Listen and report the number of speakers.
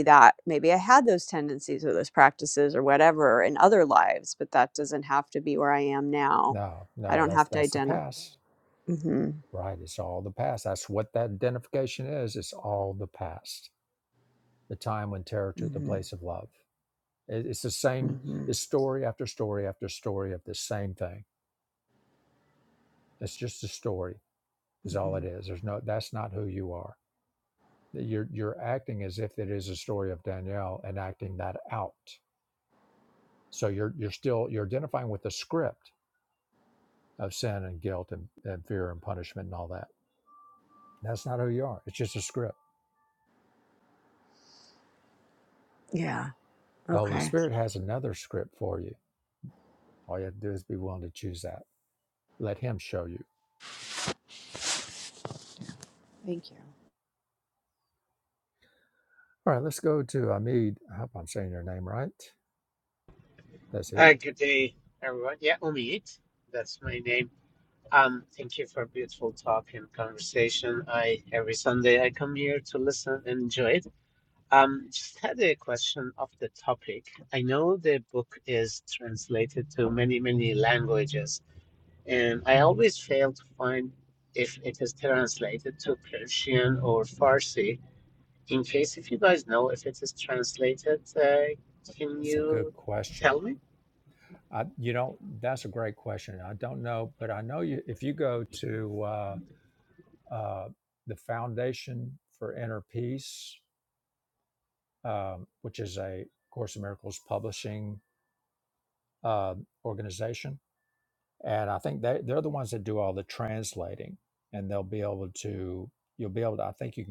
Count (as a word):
three